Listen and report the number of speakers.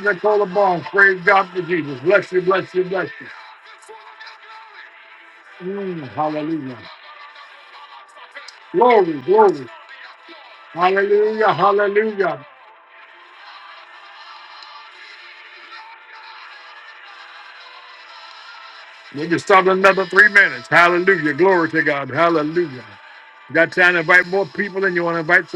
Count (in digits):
1